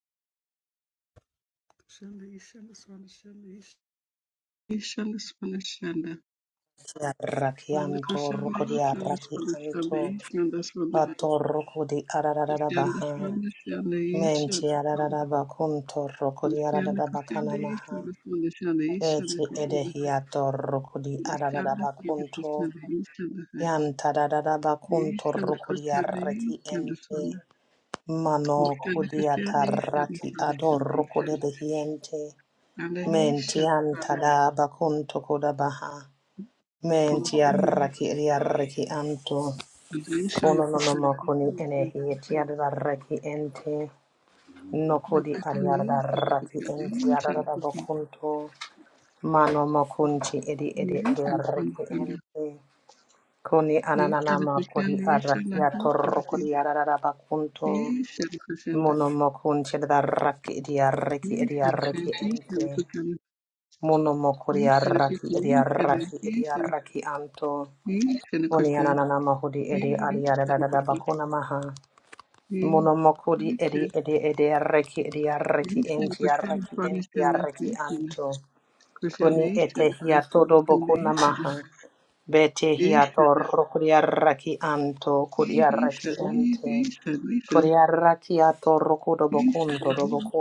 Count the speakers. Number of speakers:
2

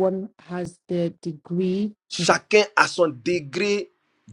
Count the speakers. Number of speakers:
2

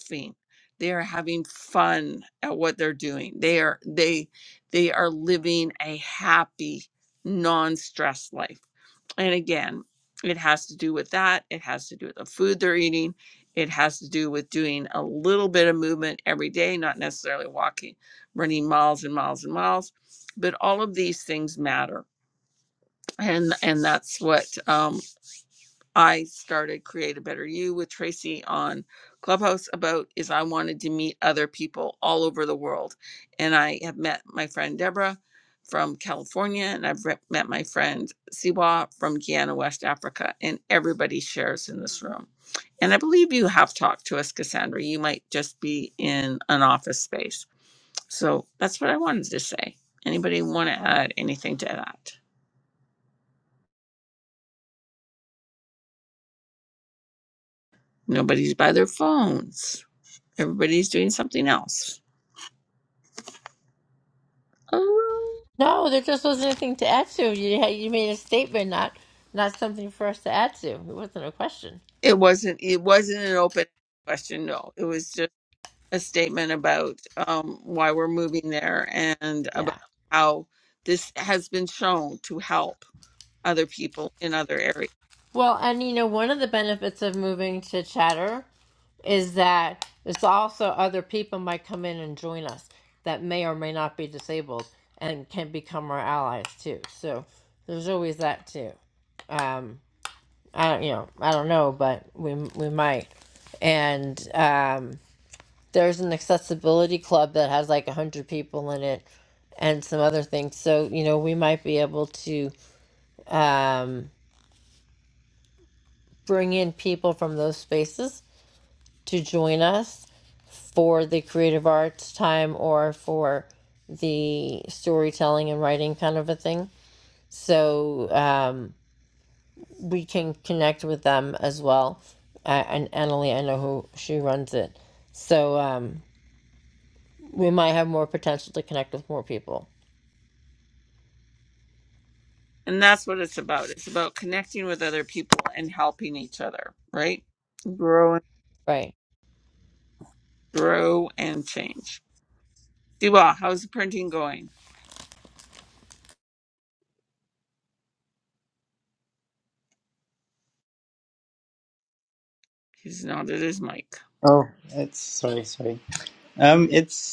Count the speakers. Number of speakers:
3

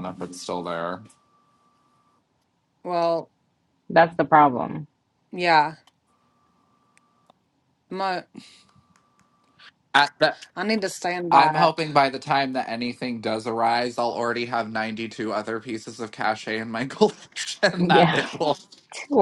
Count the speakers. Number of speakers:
3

